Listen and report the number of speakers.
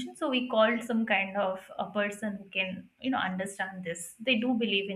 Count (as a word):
one